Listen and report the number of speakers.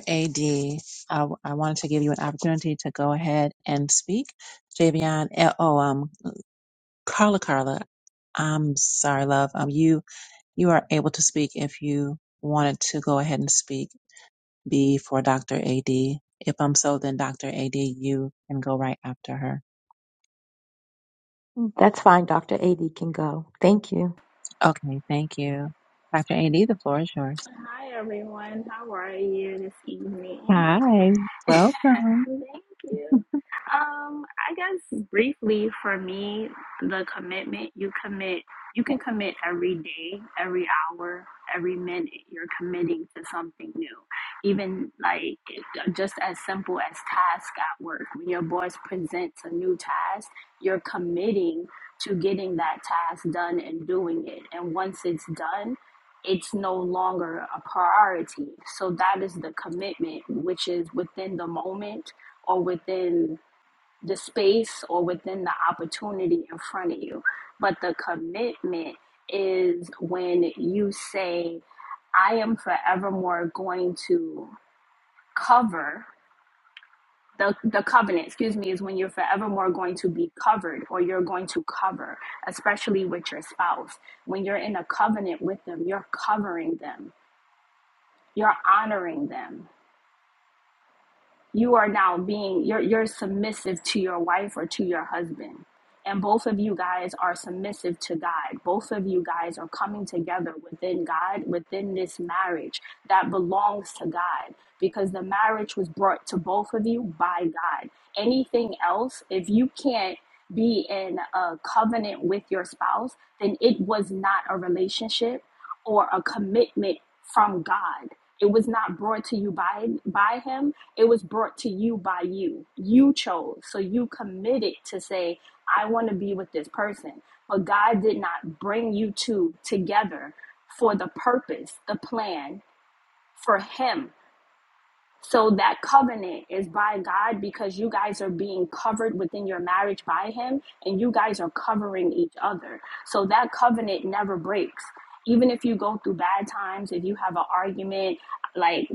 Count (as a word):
three